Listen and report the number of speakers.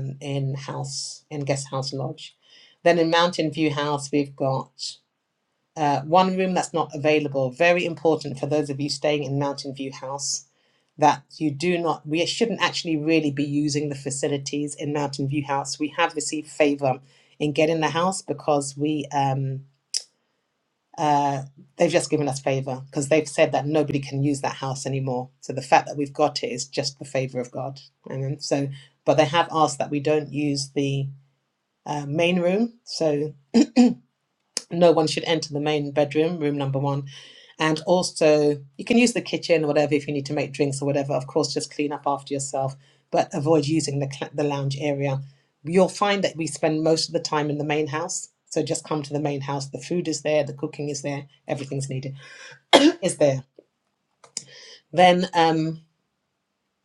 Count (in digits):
1